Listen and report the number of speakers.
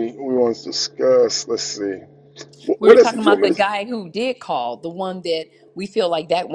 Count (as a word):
two